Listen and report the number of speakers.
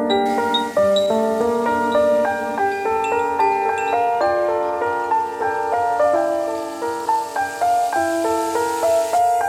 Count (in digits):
0